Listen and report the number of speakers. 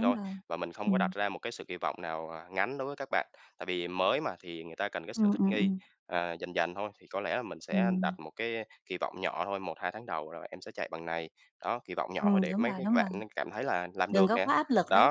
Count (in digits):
2